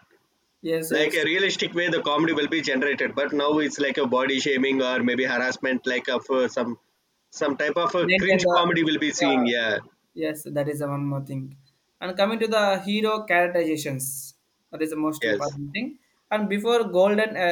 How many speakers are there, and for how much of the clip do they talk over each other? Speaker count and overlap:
two, about 8%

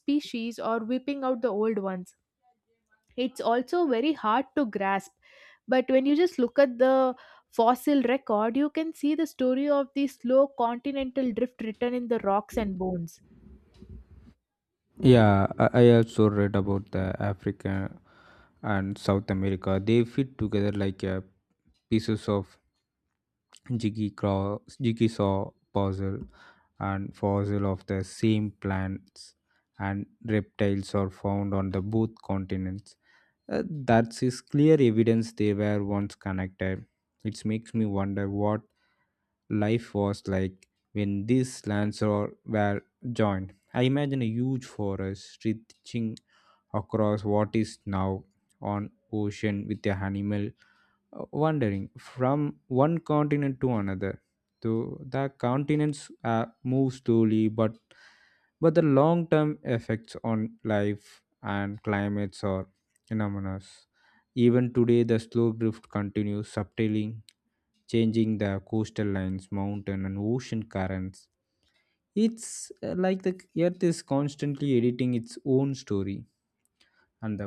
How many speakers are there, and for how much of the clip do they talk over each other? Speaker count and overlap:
two, no overlap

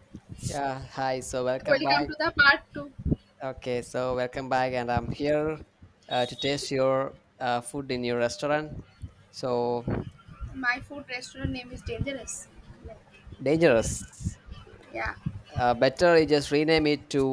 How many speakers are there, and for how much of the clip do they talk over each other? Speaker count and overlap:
two, about 3%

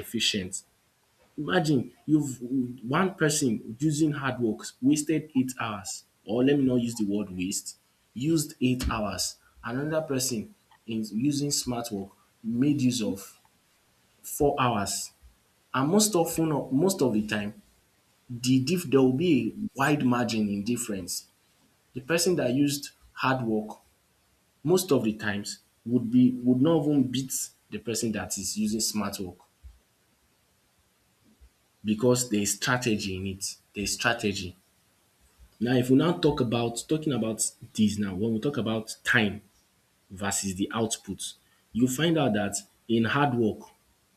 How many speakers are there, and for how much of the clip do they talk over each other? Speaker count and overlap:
one, no overlap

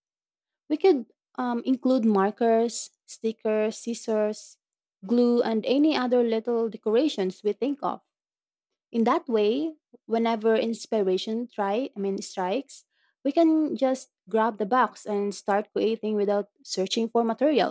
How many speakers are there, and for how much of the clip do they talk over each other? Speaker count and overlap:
one, no overlap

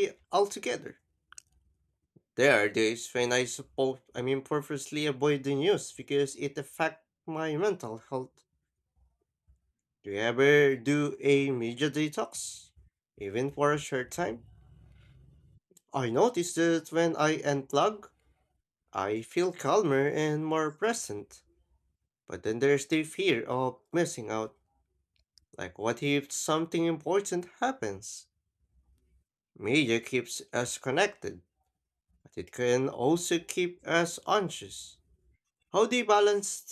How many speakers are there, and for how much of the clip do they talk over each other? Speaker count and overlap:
one, no overlap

